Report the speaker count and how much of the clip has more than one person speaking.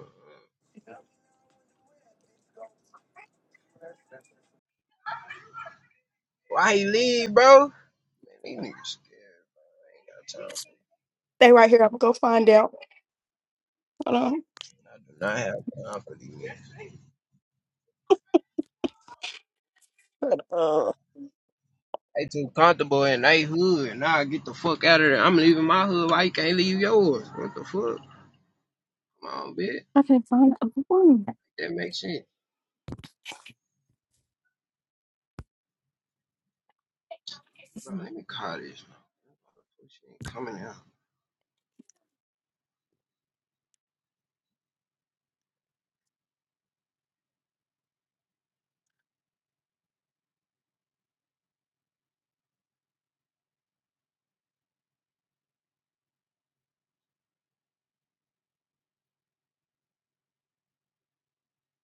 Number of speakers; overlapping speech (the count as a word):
two, no overlap